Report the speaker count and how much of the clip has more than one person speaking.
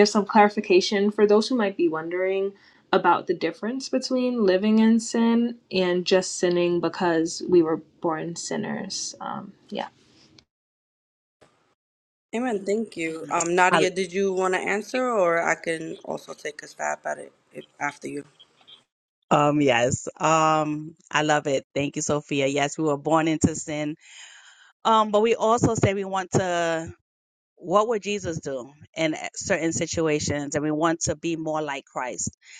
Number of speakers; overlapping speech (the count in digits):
3, about 1%